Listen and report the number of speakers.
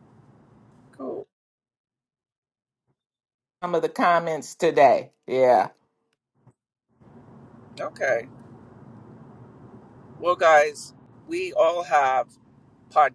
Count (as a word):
two